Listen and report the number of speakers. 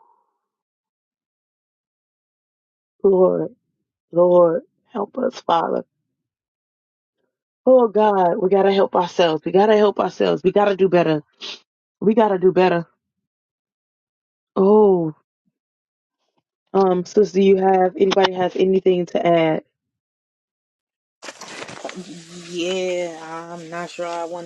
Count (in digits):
2